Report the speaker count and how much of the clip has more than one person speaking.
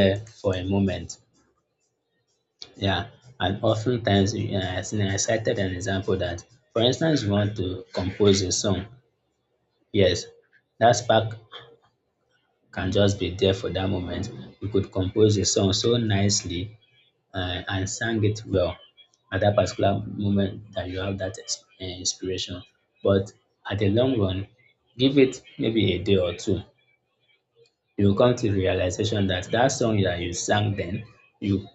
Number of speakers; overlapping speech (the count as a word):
one, no overlap